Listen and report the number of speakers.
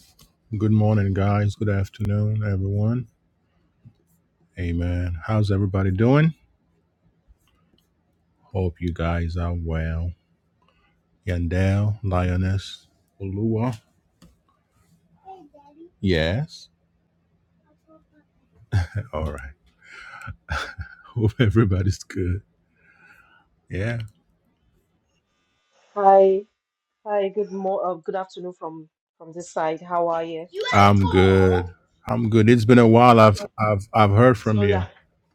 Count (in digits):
2